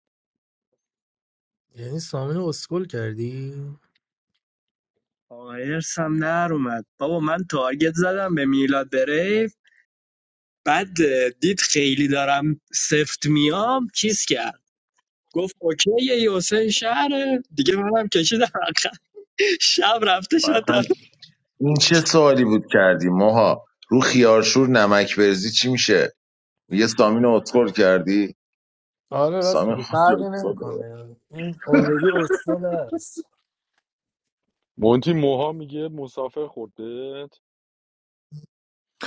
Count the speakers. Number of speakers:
4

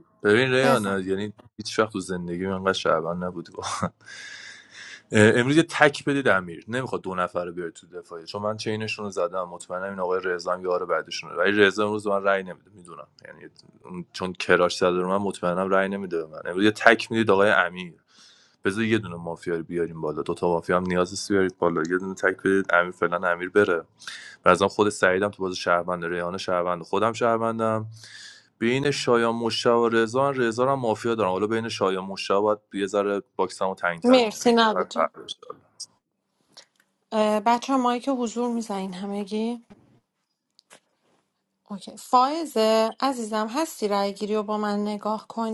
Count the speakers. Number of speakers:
2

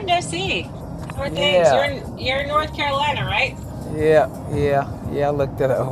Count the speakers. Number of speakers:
2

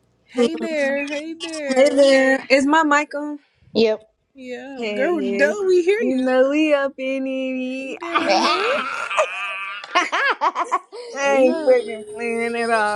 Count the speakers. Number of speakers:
3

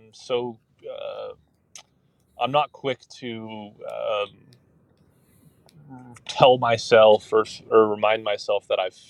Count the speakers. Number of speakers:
1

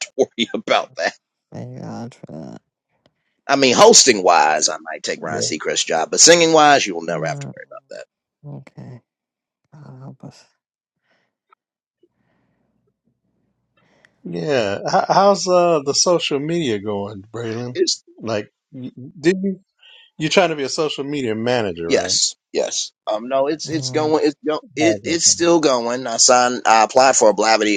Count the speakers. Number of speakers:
3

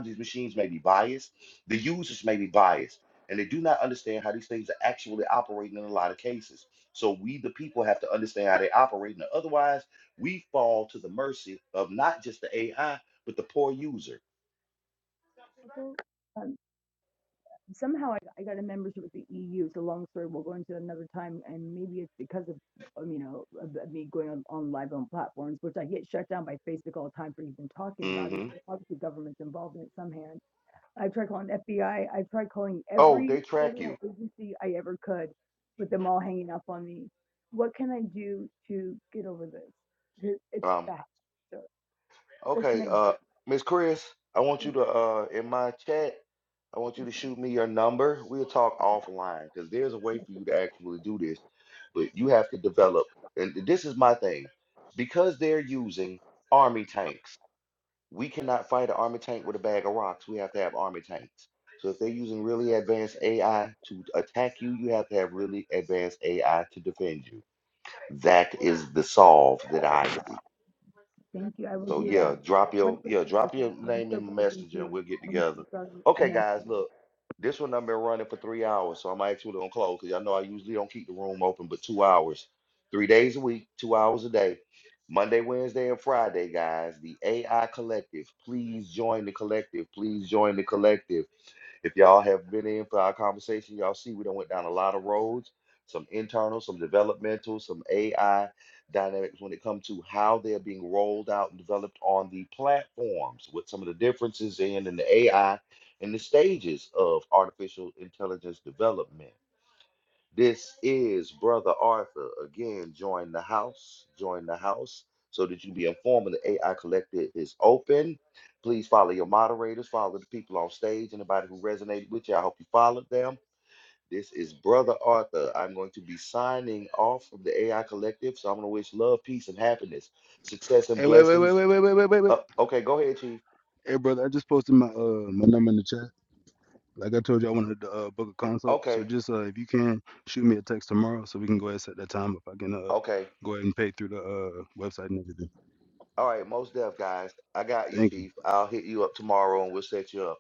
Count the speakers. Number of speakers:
3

